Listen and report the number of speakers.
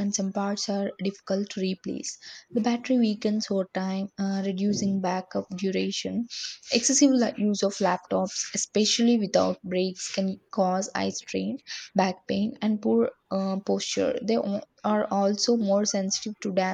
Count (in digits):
1